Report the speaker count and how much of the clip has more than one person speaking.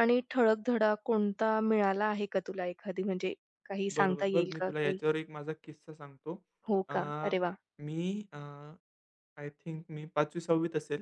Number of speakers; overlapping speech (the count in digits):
2, about 11%